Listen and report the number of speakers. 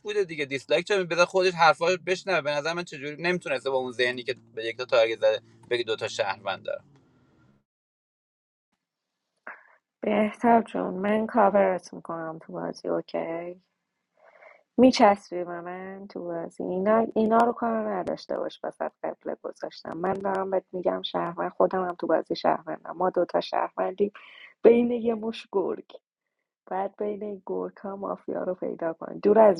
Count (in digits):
2